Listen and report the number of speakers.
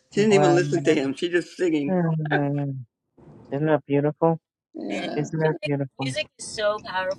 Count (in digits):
3